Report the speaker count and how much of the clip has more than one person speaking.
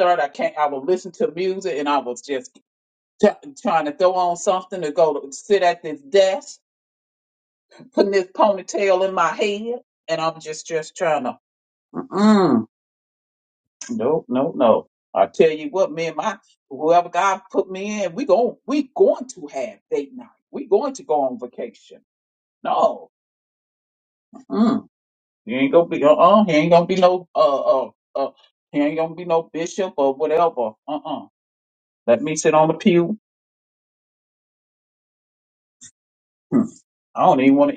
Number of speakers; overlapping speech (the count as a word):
one, no overlap